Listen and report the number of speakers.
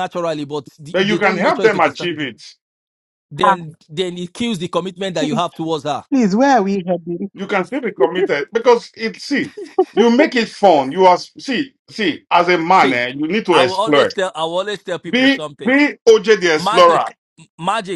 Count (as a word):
three